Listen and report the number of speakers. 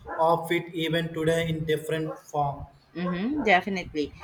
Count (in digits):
2